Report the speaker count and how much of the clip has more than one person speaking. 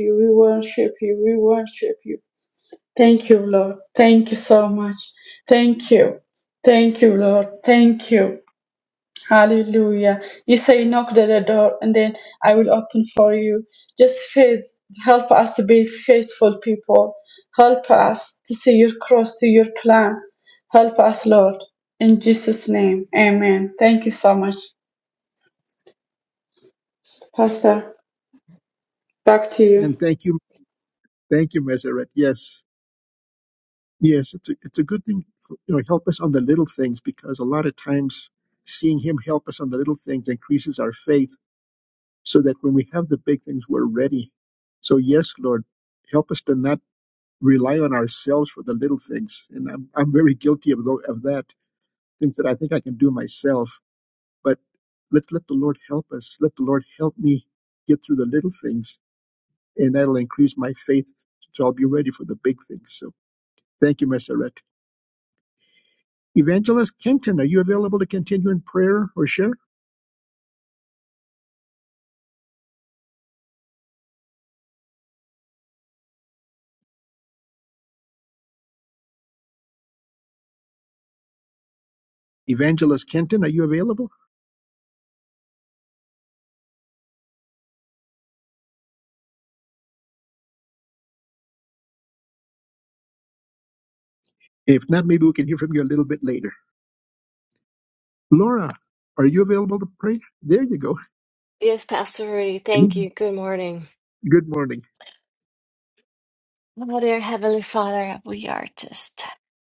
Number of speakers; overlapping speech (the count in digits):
3, under 1%